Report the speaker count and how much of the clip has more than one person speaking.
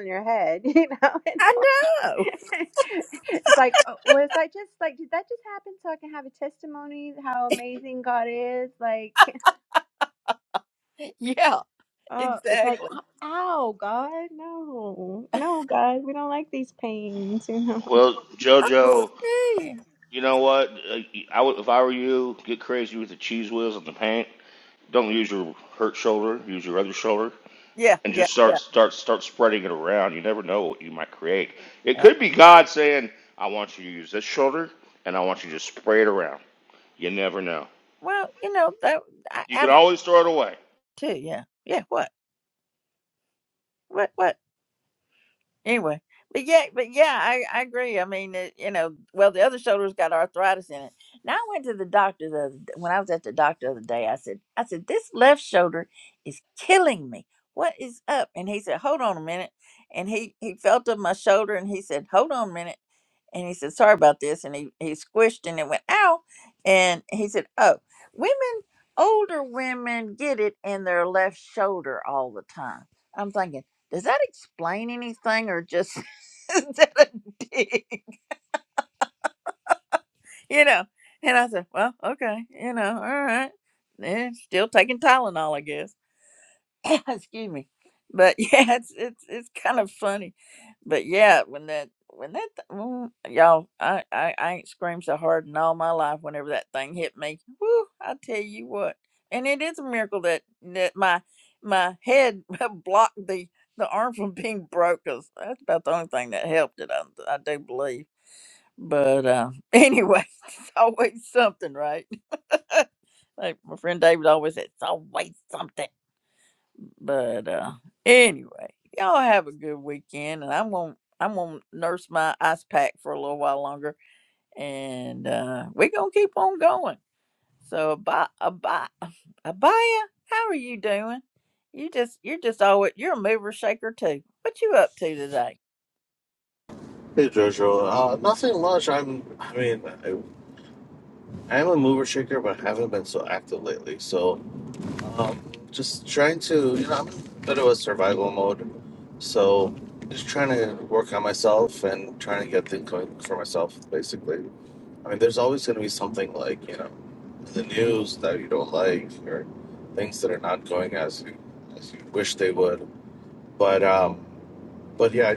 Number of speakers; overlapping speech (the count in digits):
4, about 1%